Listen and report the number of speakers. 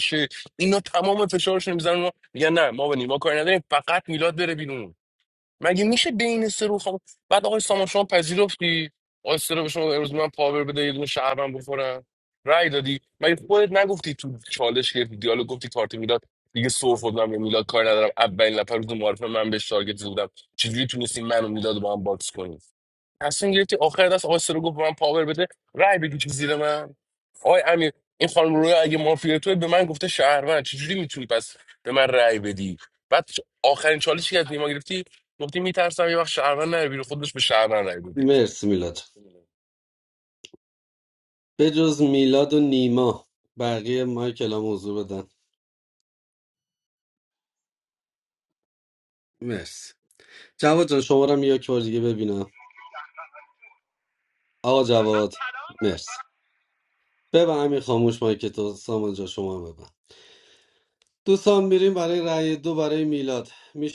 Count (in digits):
2